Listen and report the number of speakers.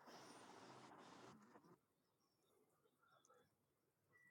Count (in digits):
0